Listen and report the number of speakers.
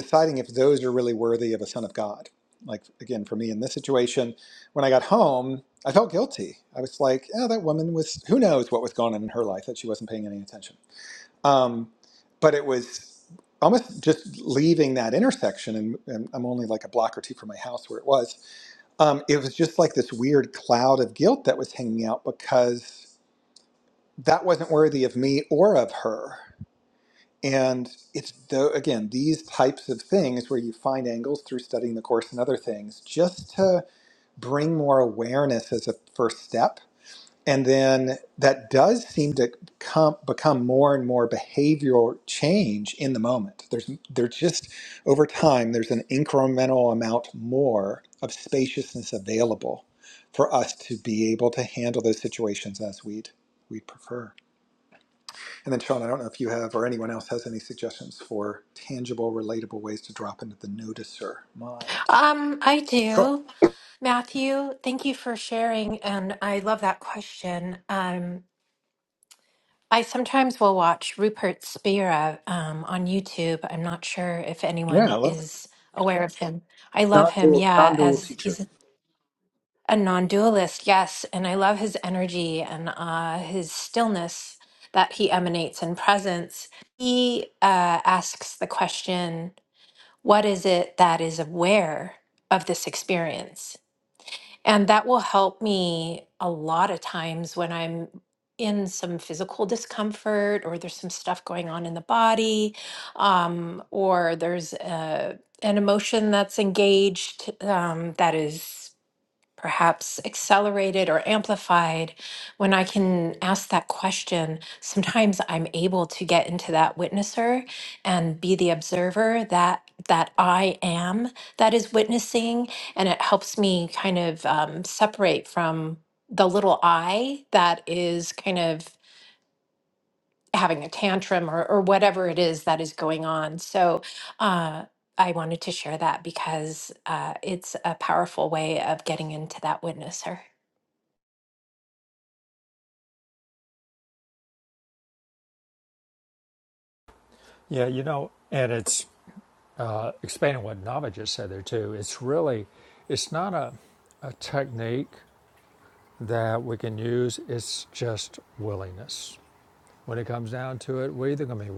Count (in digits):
3